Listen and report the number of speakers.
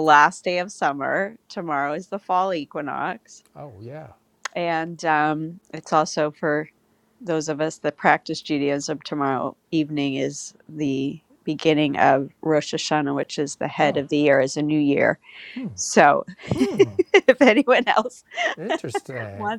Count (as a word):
two